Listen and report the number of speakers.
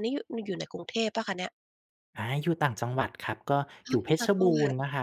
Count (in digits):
2